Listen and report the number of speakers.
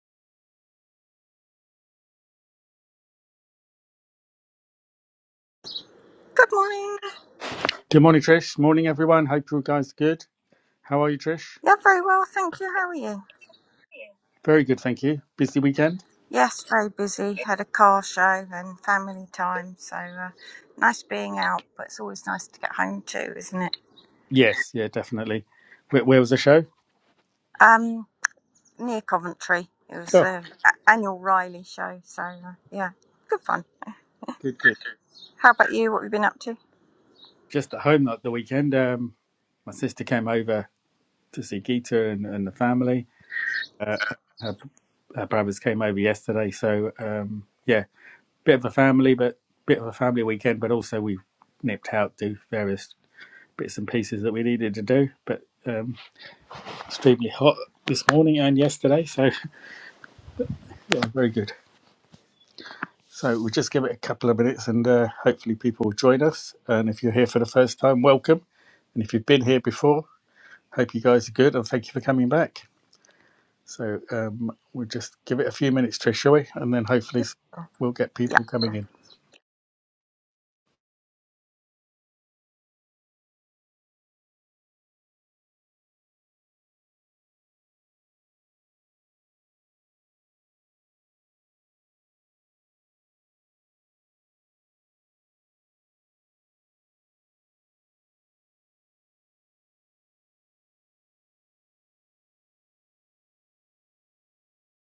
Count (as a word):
two